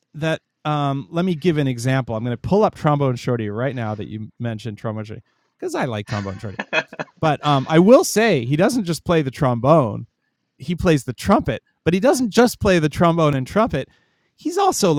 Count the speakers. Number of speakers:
1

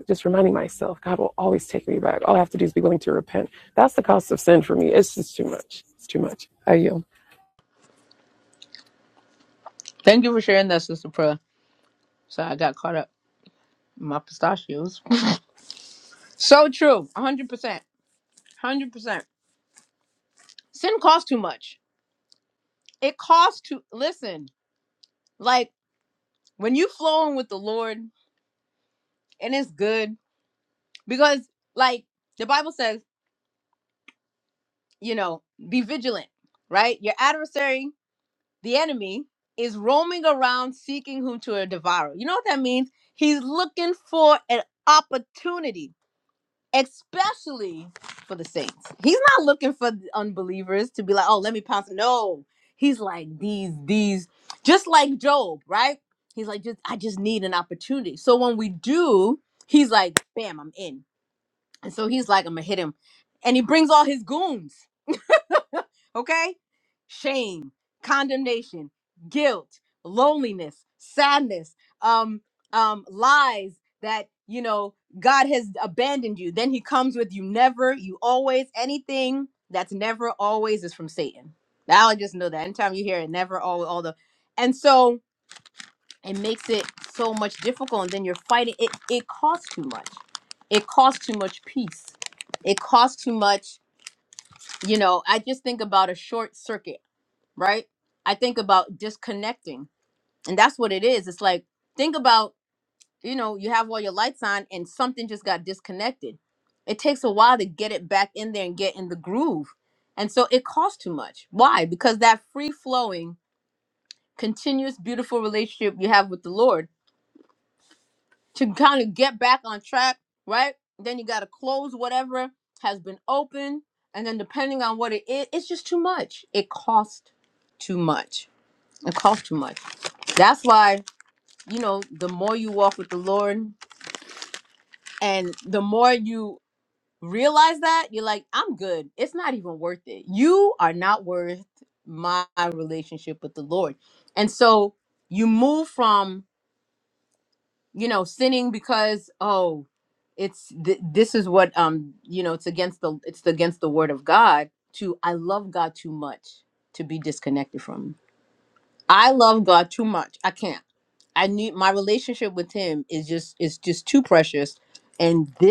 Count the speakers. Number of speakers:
2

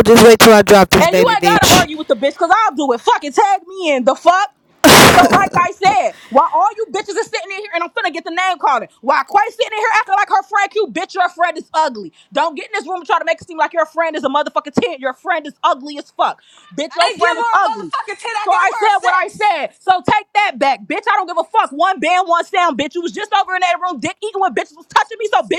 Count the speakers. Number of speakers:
3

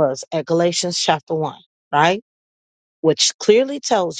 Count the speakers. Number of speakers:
1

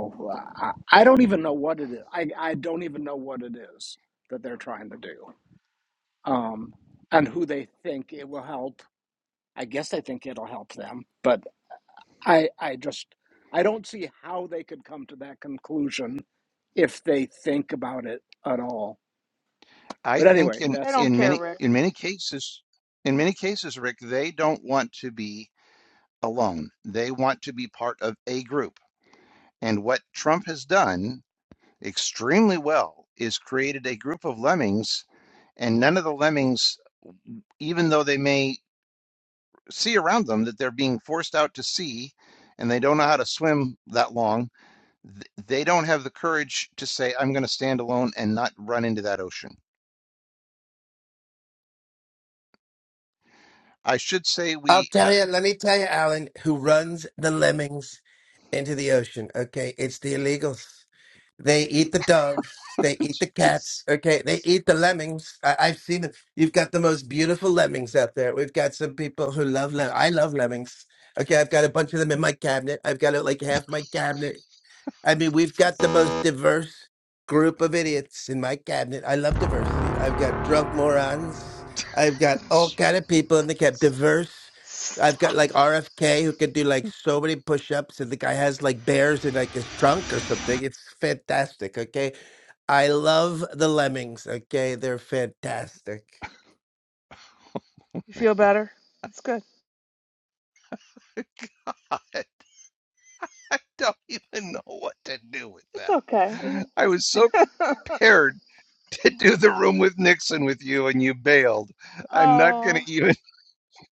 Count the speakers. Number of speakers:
4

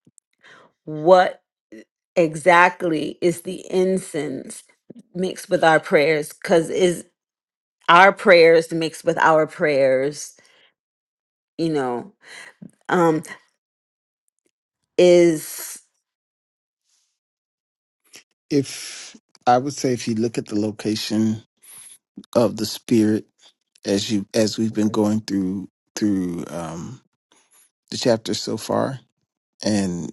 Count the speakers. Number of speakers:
2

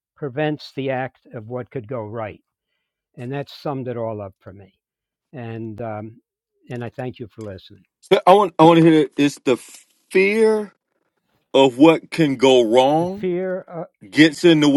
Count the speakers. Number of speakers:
2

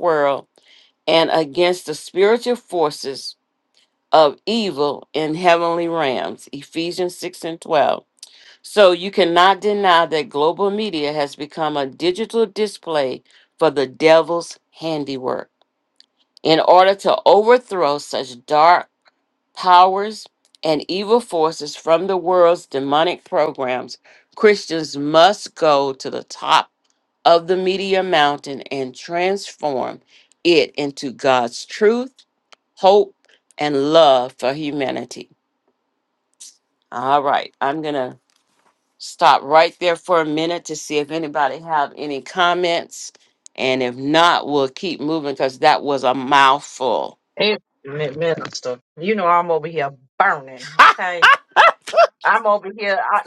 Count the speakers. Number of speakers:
2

